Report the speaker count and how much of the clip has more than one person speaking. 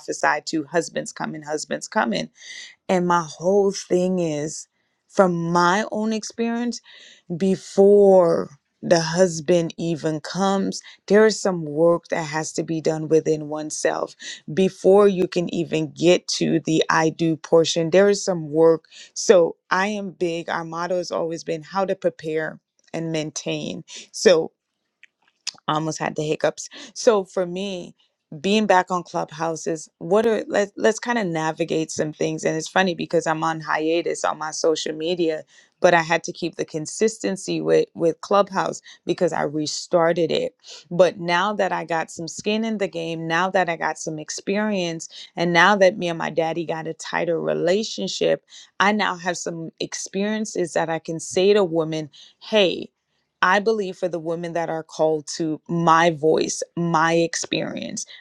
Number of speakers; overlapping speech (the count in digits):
1, no overlap